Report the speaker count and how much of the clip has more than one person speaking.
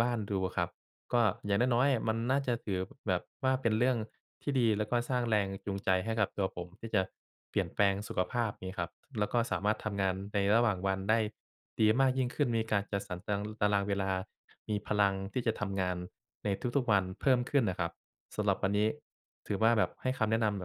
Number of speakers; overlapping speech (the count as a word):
one, no overlap